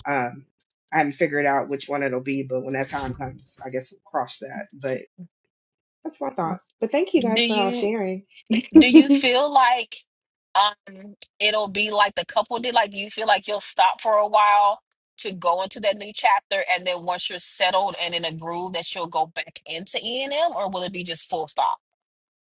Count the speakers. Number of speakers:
2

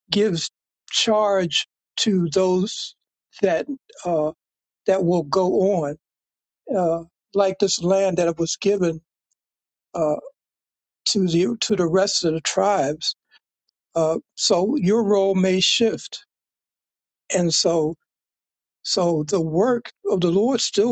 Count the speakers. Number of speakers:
1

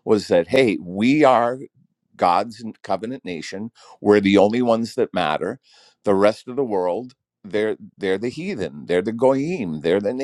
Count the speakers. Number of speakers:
1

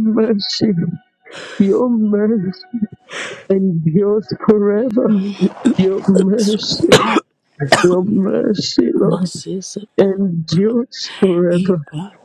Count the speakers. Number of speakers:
2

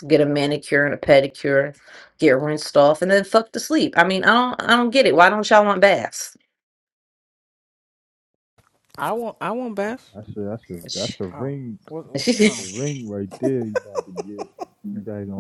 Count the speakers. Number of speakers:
3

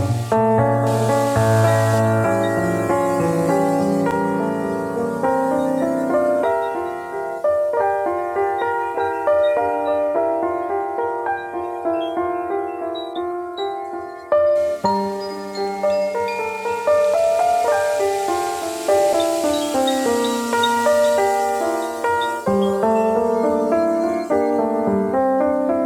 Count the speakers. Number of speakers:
0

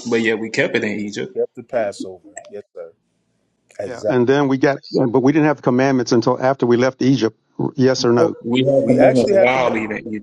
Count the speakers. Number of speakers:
3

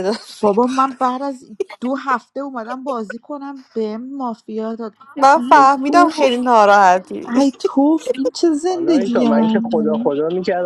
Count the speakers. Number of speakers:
3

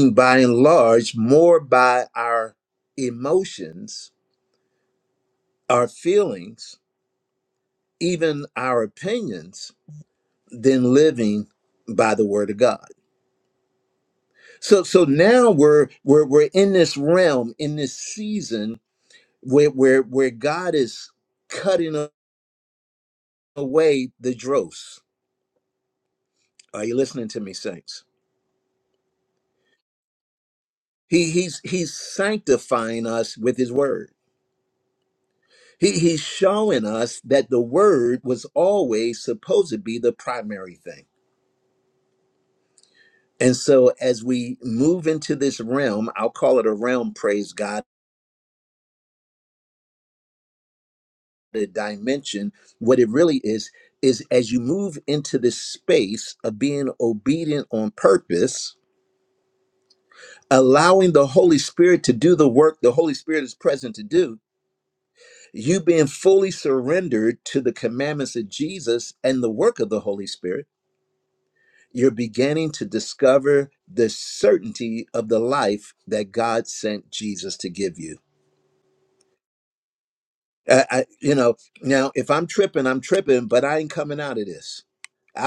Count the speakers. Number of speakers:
1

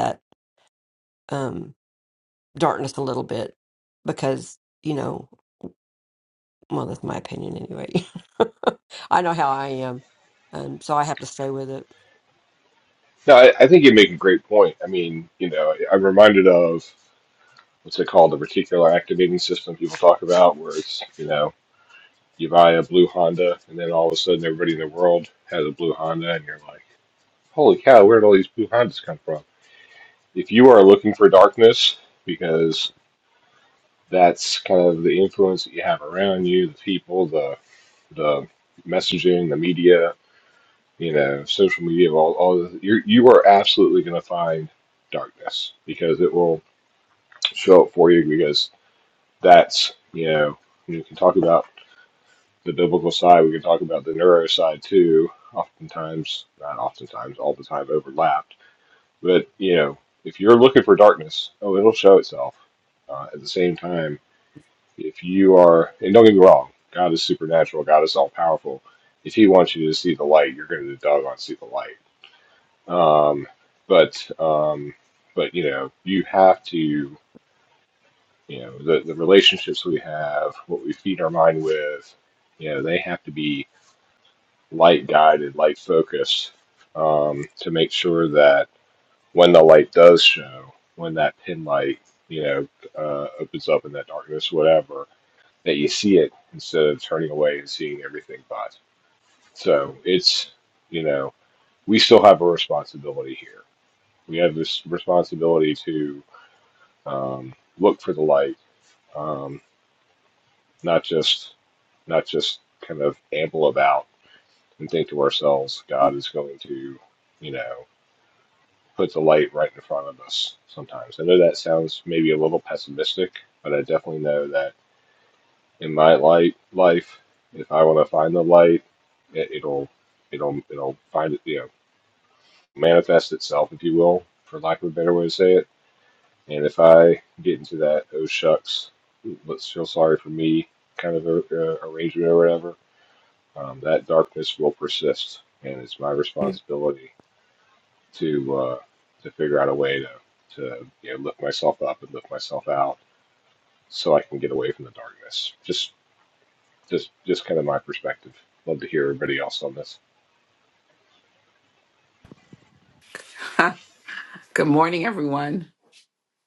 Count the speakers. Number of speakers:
3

